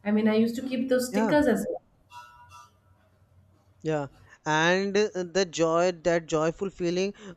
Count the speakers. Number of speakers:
2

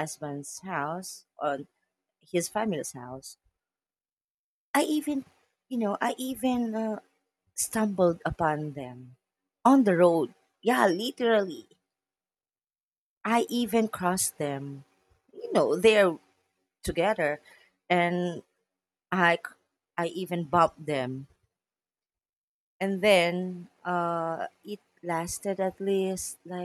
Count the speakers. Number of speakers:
1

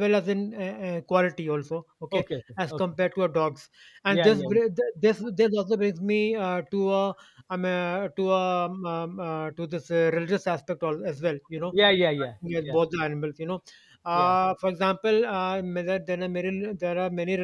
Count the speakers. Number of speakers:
2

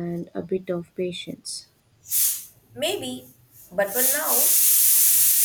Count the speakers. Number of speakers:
2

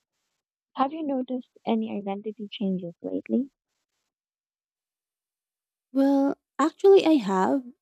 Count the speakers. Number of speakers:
2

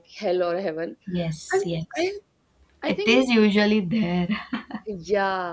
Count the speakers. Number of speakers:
2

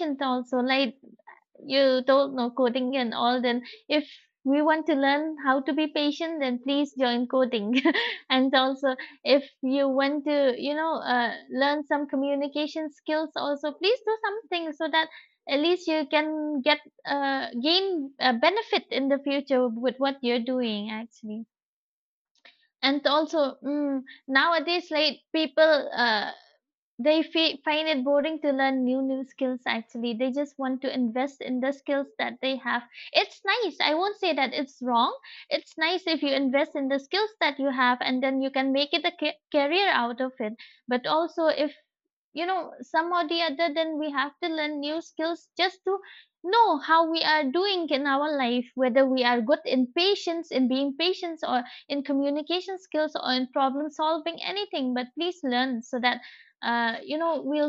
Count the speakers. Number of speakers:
1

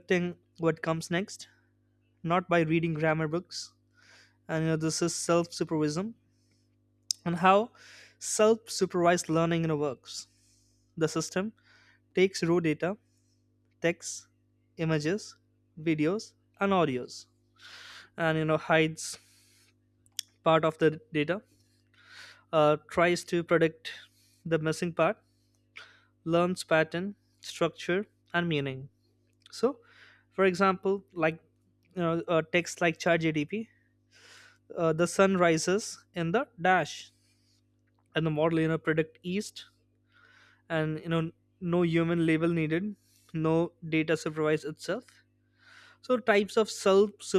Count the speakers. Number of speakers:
1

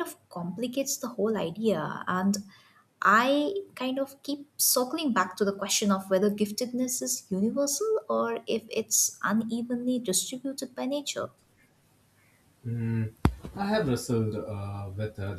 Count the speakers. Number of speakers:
2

